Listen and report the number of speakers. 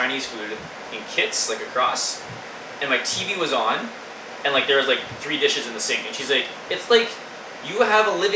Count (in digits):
1